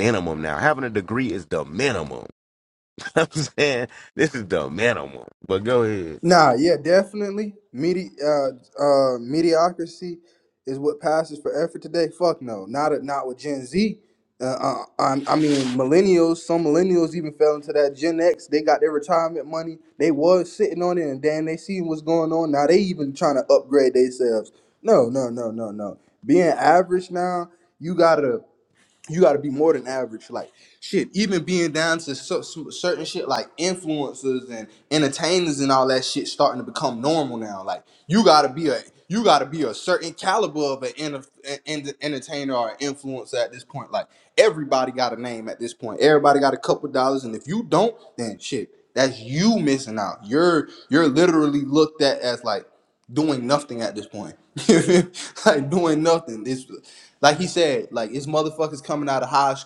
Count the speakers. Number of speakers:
2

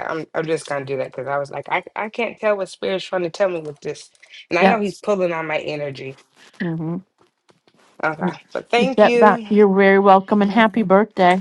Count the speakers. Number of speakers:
2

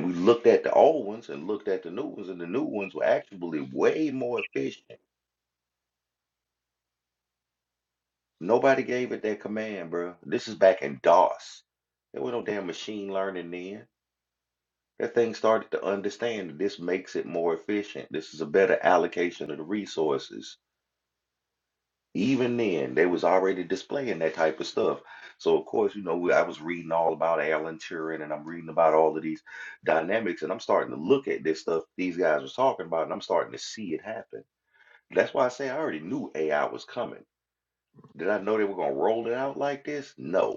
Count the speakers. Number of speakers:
1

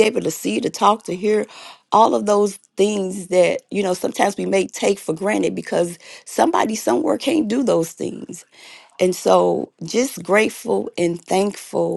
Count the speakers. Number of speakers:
1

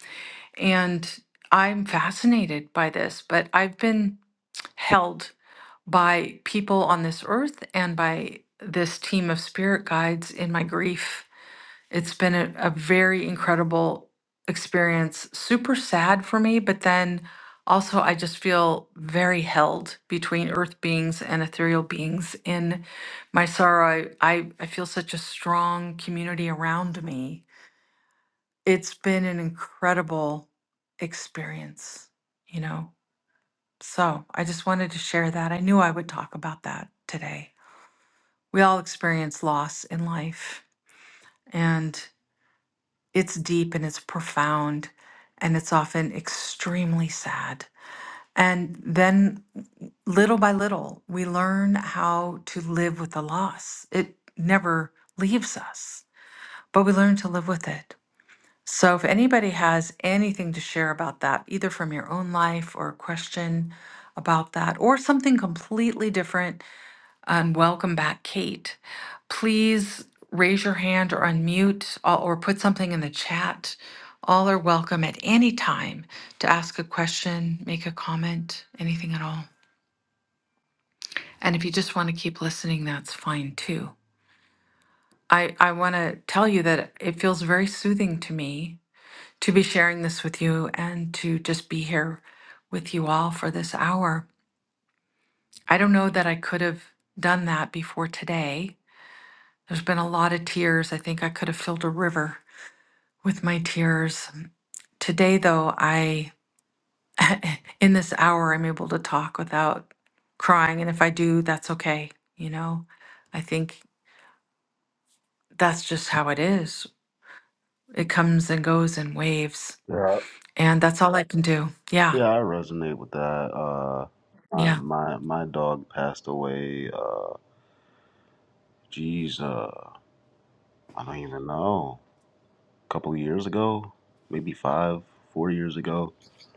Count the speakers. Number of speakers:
2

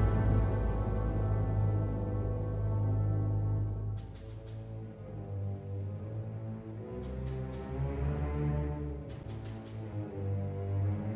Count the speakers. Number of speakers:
0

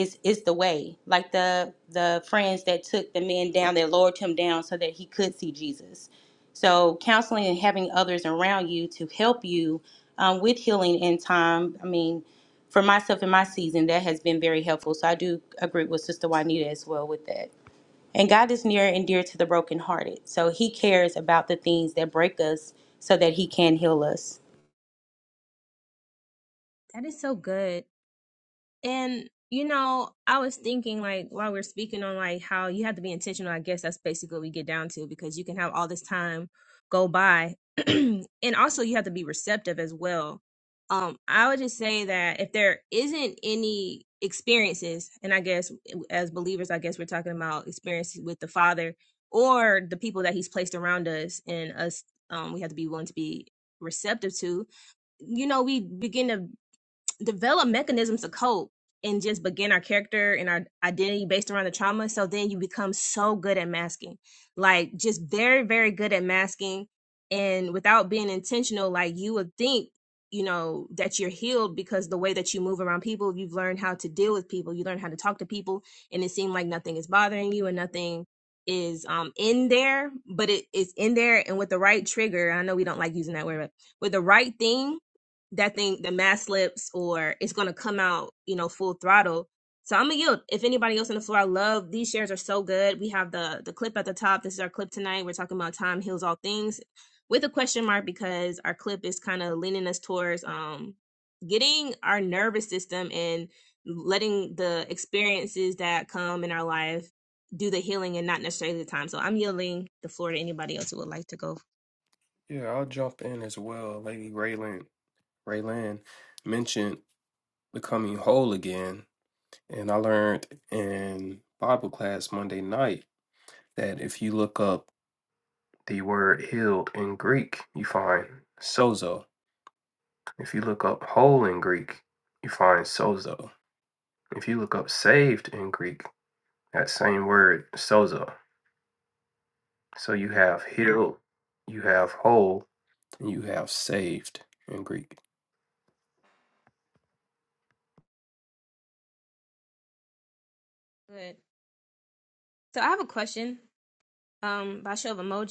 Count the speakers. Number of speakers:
3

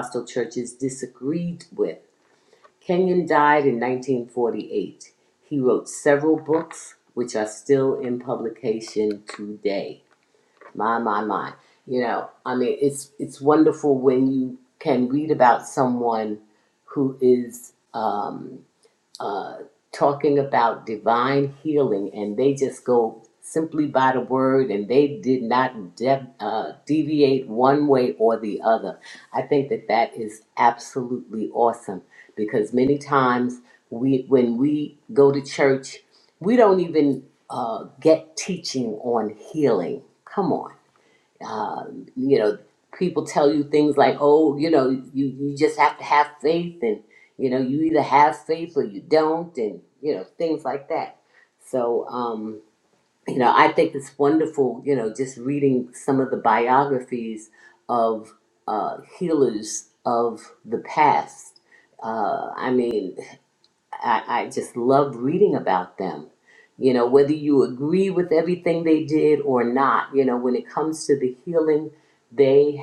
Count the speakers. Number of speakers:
1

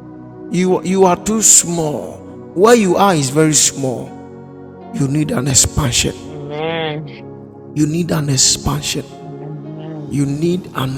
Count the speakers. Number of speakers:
2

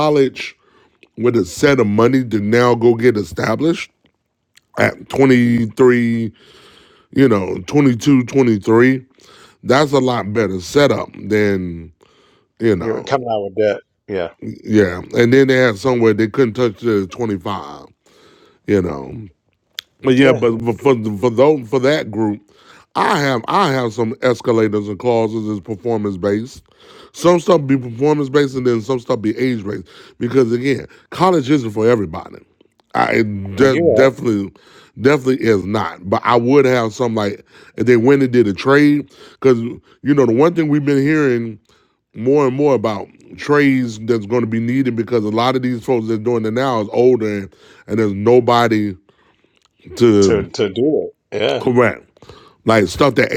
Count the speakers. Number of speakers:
2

